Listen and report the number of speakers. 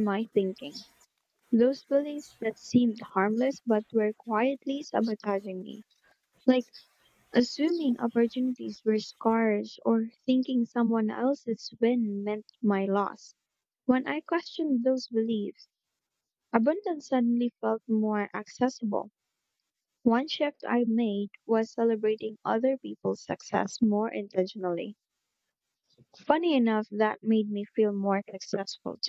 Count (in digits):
1